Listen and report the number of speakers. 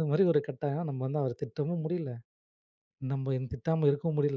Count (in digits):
1